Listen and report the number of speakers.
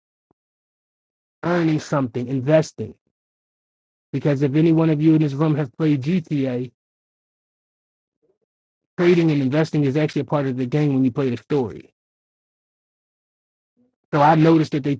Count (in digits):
1